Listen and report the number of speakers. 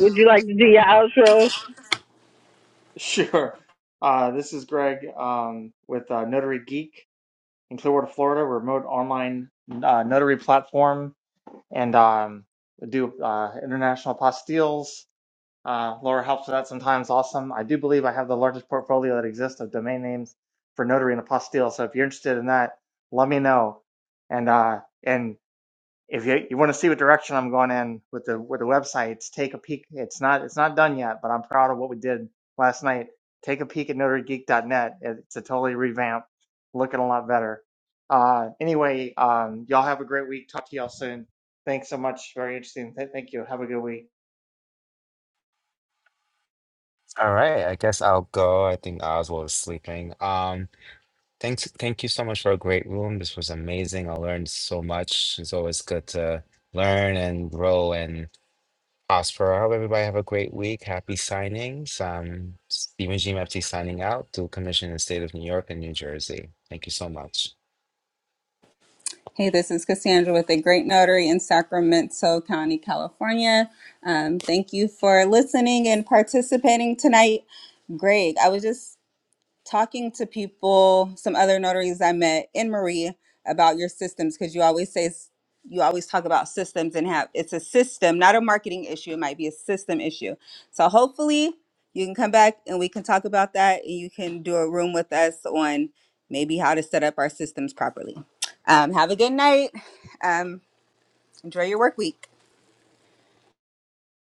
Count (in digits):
4